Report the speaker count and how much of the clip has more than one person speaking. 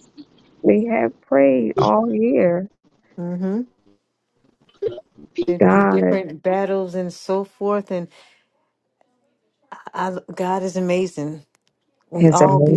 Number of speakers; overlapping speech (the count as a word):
two, about 9%